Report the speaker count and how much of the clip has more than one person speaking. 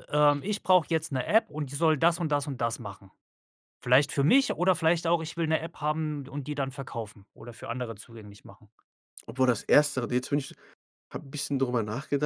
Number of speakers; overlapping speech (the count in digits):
2, no overlap